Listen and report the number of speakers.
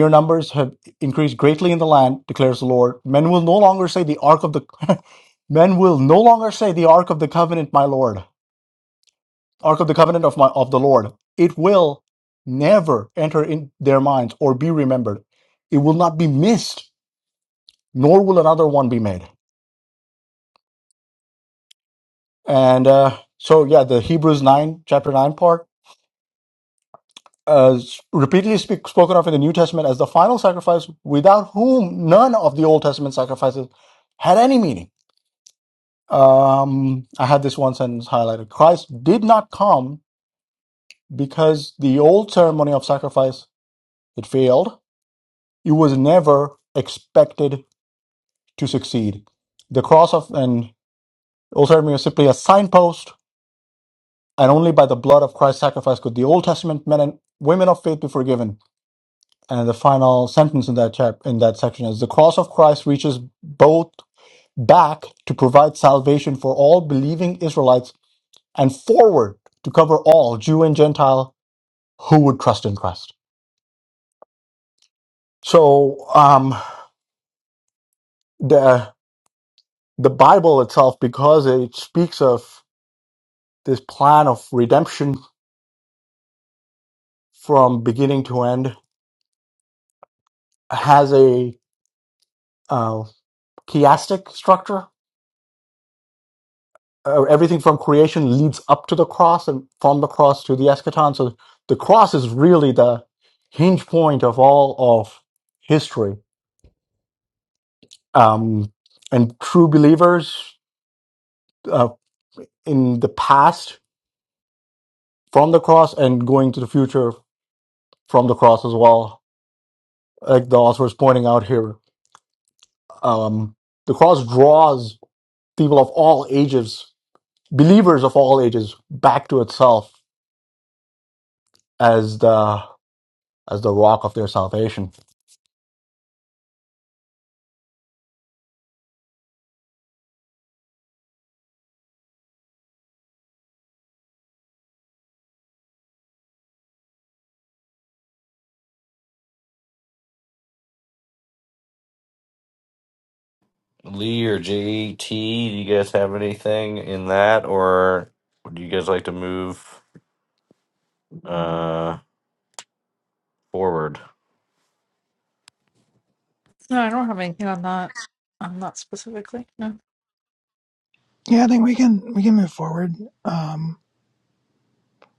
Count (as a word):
four